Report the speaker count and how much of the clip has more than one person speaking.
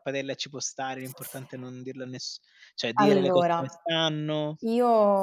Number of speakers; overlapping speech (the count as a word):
two, about 16%